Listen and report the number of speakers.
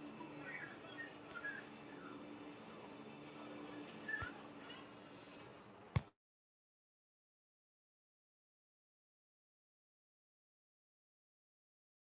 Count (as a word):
zero